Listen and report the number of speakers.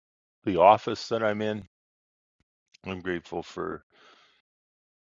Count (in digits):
1